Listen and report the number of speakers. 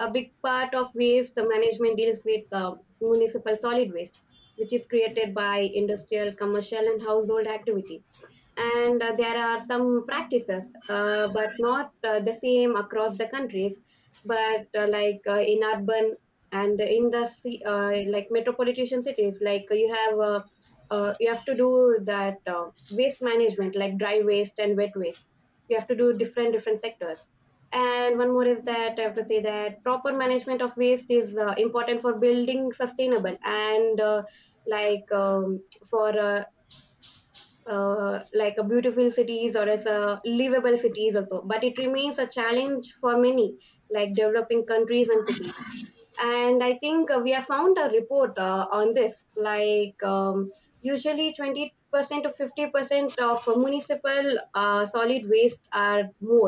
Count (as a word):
one